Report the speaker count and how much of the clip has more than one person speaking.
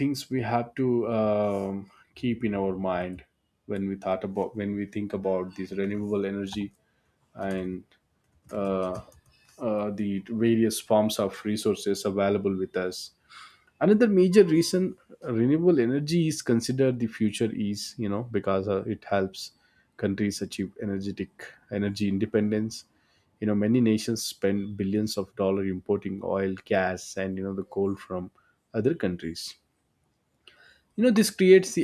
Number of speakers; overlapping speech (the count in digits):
1, no overlap